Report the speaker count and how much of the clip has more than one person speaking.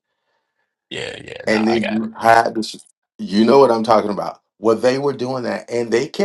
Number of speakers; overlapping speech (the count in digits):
2, about 9%